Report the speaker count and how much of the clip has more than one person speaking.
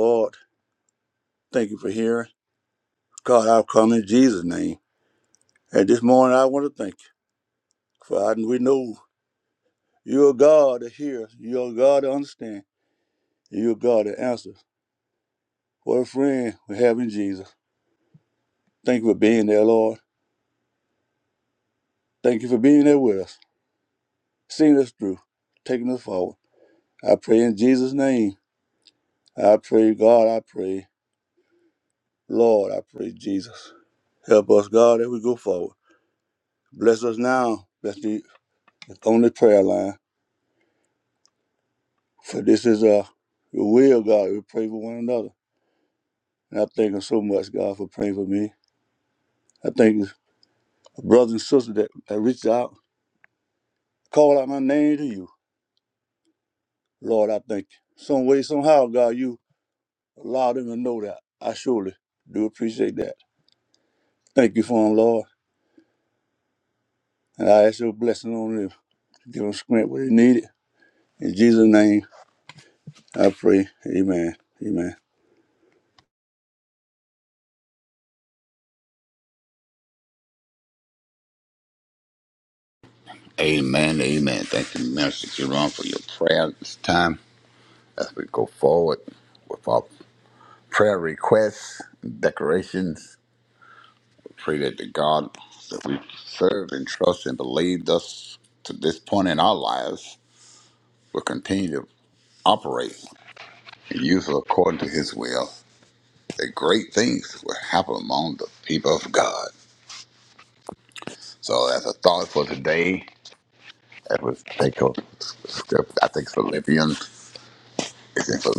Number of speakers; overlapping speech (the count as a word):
two, no overlap